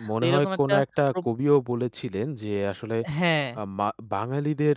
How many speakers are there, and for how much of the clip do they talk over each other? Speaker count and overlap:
two, about 15%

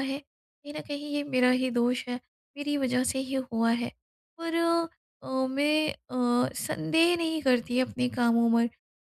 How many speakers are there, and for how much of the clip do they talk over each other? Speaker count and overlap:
one, no overlap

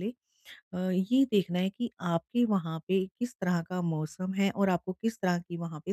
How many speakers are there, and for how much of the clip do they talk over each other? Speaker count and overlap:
one, no overlap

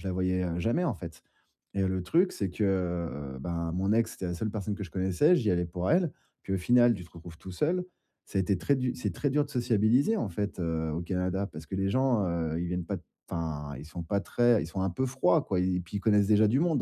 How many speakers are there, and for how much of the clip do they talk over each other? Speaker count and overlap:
one, no overlap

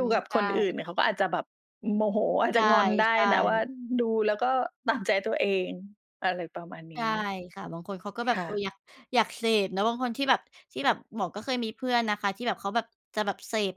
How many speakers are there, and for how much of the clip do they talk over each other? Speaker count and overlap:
two, about 11%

